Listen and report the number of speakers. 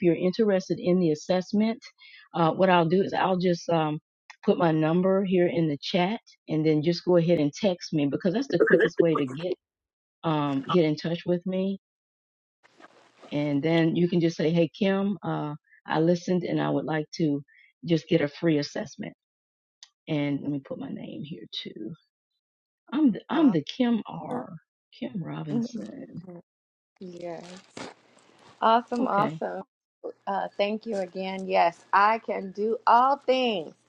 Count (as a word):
two